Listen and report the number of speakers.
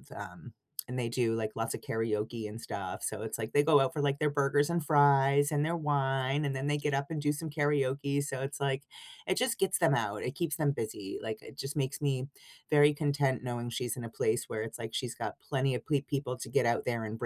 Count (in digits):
1